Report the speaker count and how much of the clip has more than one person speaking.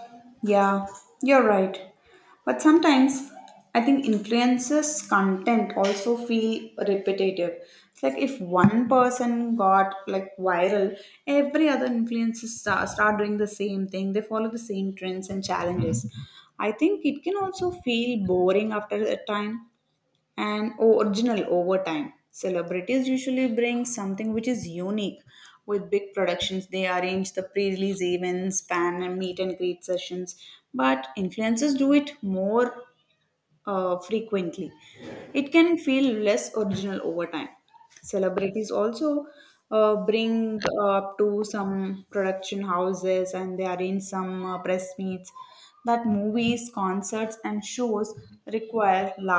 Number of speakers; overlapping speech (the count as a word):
one, no overlap